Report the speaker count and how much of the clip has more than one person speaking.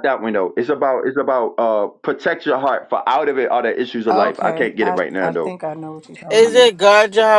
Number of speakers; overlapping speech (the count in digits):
3, about 25%